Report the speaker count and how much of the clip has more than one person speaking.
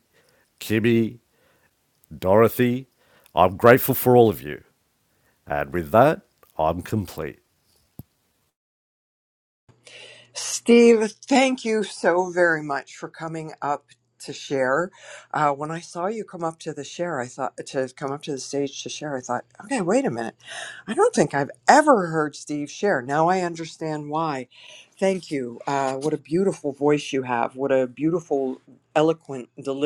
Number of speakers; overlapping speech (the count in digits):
2, no overlap